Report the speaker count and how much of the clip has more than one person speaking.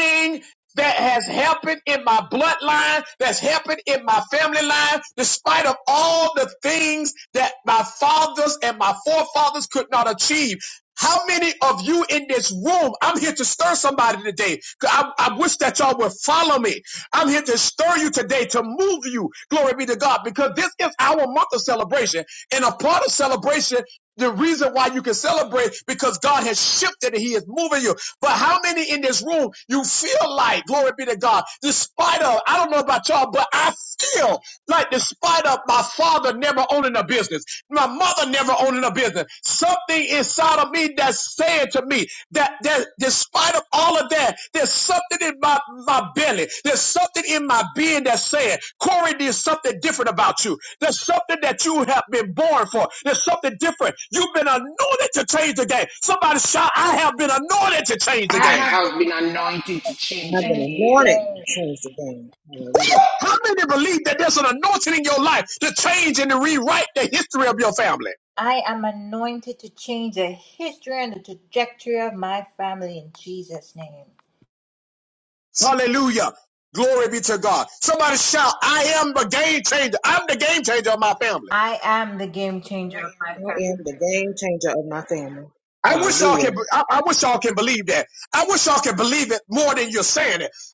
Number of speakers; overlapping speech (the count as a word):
four, about 3%